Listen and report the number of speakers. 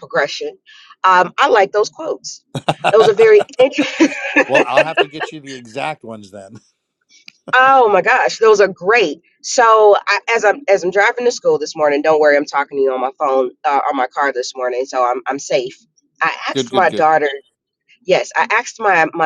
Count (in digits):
2